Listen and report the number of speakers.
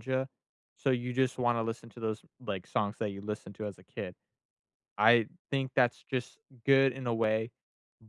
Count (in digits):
1